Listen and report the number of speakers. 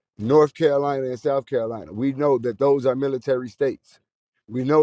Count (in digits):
1